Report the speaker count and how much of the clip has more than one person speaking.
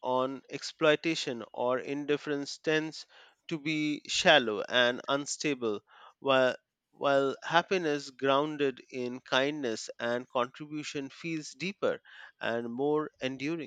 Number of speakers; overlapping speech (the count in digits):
1, no overlap